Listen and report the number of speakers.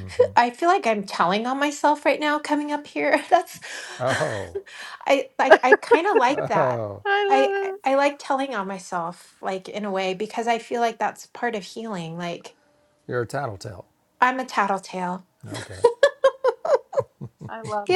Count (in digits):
3